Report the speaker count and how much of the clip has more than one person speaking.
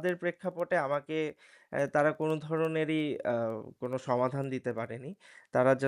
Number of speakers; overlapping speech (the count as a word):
one, no overlap